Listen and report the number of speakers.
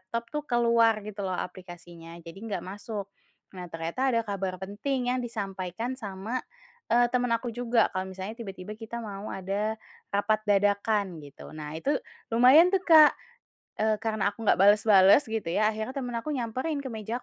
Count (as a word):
one